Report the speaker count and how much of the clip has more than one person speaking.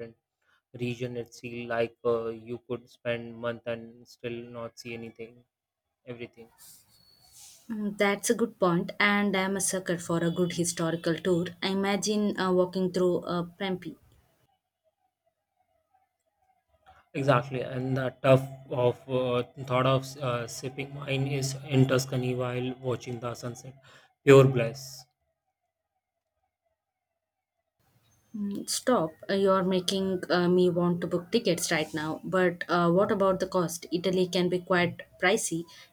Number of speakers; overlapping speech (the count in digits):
2, no overlap